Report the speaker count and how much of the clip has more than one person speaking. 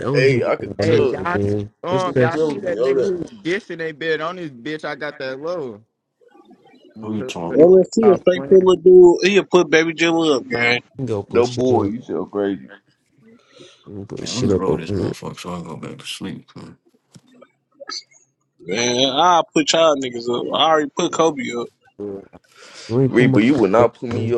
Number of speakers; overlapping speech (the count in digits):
5, about 26%